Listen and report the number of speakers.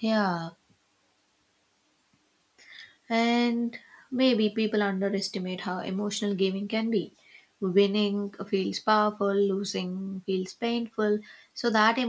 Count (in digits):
1